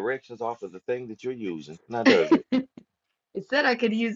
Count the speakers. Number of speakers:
two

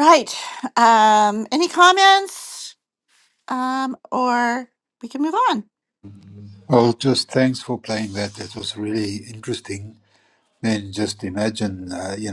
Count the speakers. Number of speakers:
two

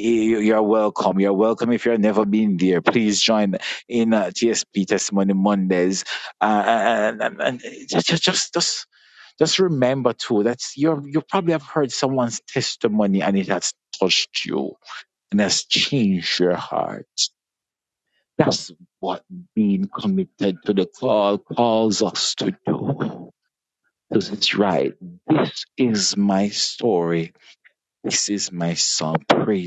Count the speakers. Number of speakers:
one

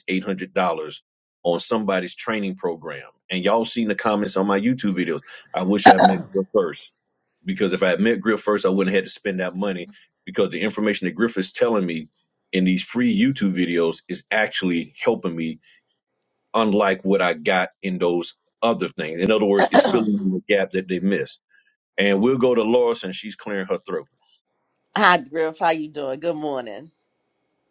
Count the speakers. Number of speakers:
two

